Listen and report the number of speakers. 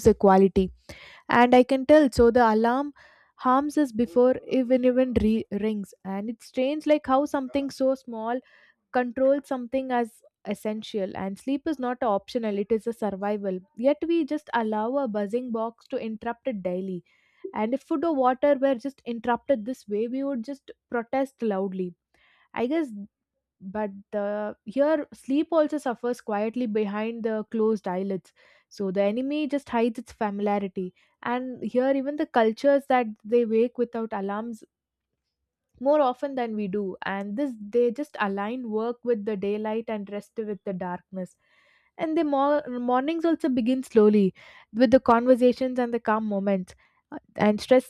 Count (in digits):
1